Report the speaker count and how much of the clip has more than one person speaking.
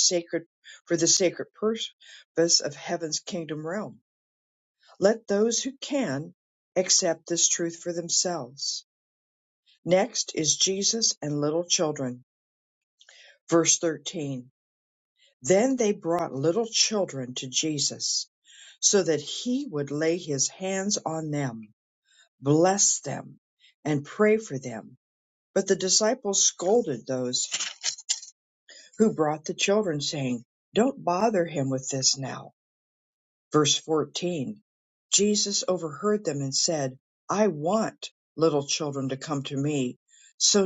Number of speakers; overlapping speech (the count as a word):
one, no overlap